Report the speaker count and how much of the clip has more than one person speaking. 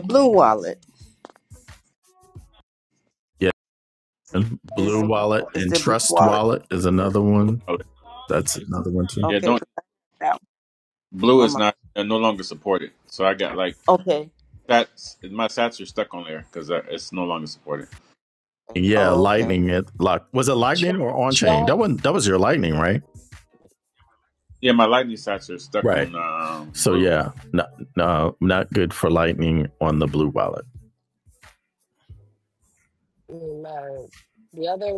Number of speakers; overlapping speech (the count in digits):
4, about 10%